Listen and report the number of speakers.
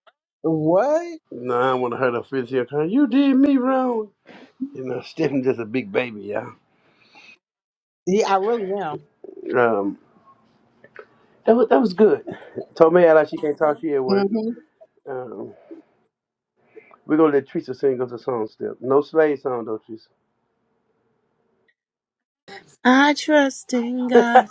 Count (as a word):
three